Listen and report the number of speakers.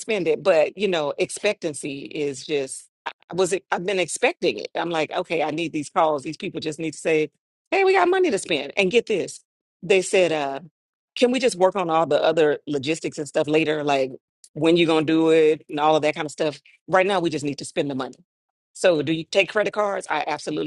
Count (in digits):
1